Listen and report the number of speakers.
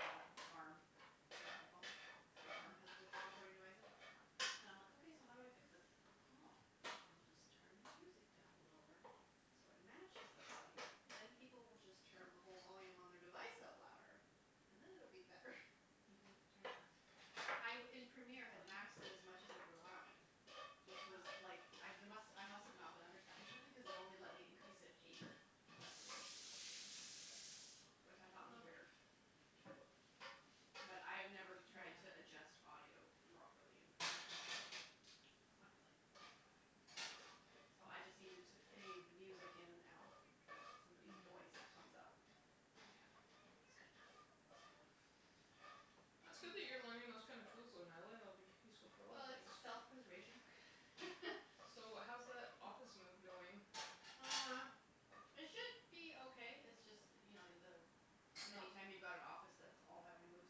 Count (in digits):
3